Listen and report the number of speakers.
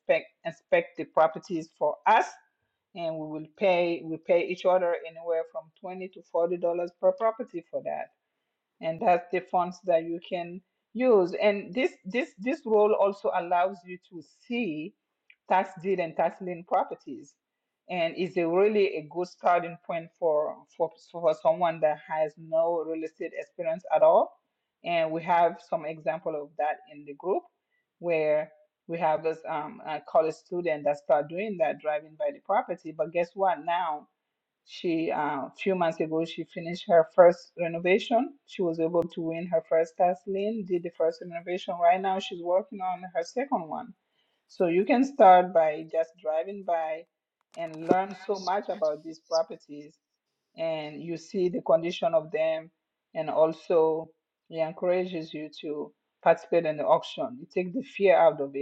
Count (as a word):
one